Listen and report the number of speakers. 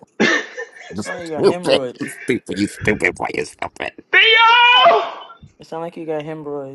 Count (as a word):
three